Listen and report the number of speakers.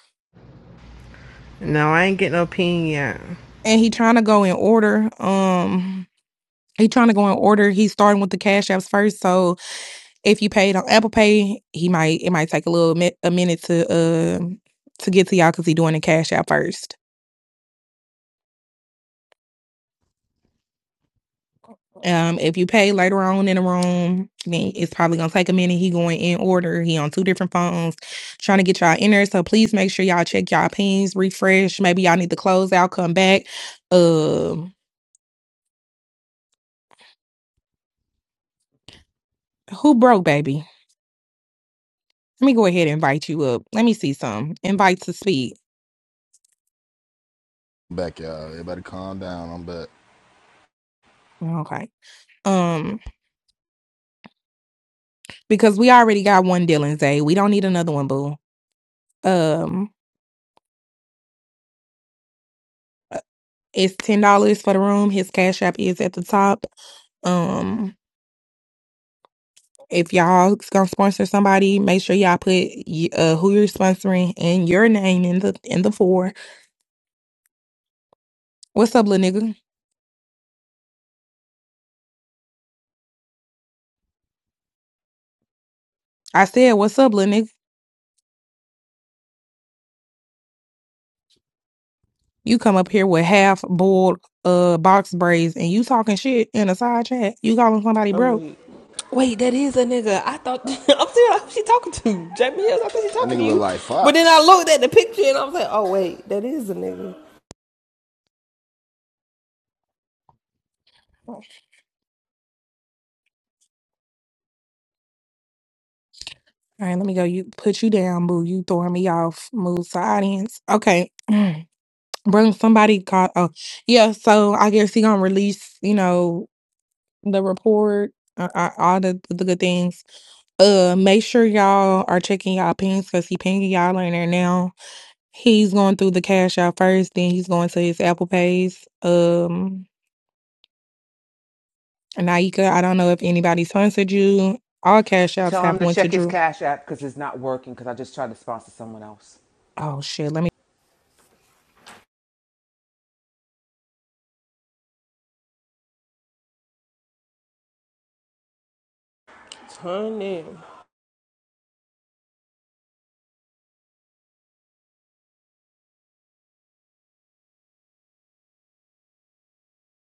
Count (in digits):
5